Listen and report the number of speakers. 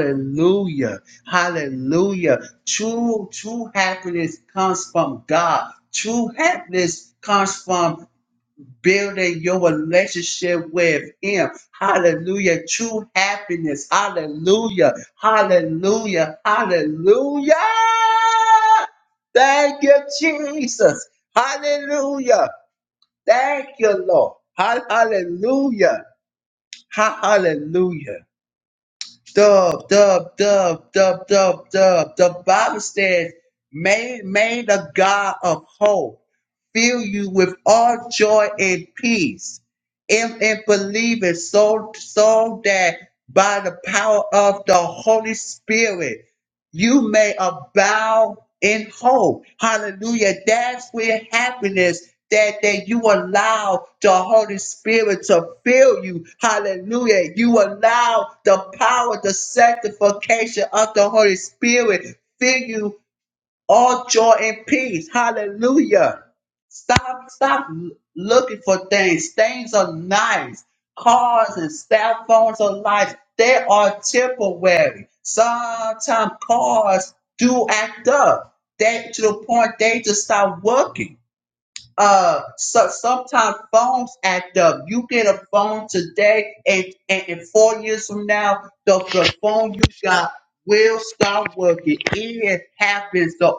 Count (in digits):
1